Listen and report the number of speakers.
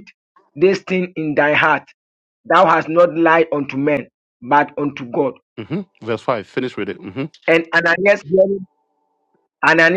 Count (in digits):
2